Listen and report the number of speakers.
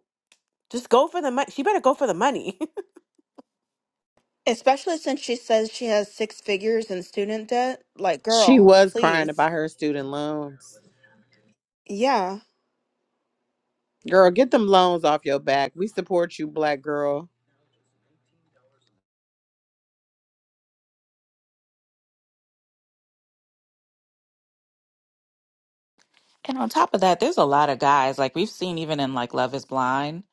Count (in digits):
4